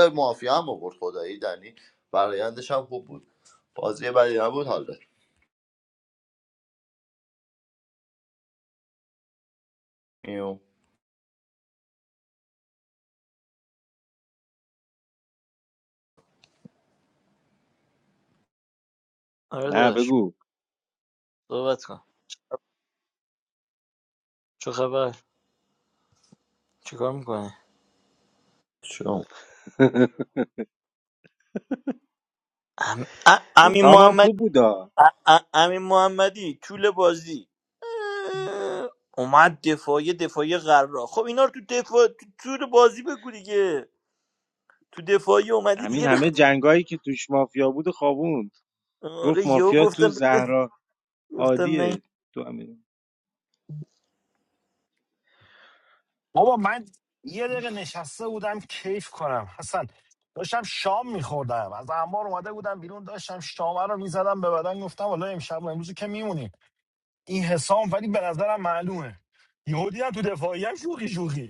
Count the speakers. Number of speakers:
4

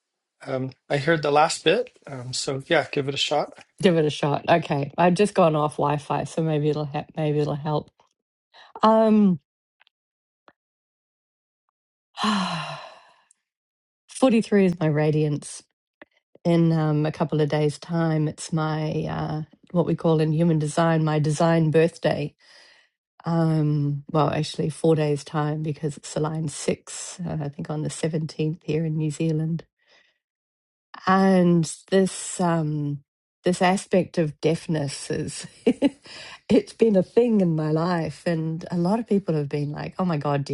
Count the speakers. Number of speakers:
2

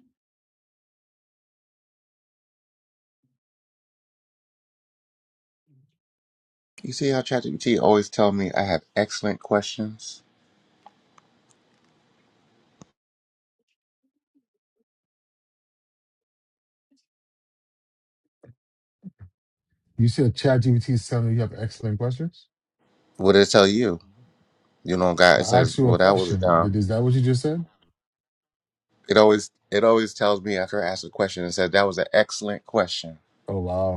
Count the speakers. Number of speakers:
2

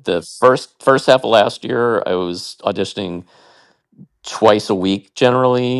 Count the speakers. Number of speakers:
1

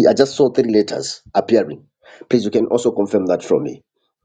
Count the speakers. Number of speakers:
1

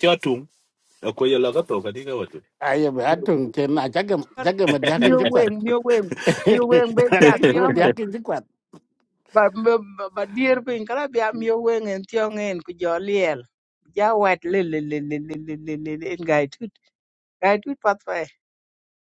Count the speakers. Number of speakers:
3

